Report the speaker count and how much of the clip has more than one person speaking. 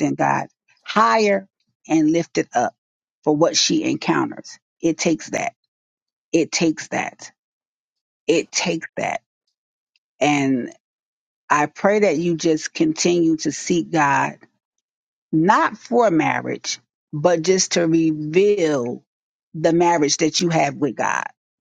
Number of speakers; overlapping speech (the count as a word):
one, no overlap